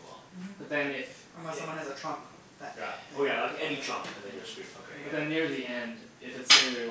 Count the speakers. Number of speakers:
3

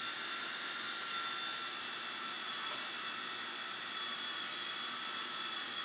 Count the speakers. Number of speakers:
0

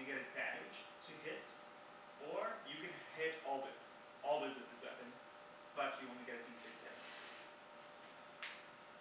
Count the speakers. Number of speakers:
1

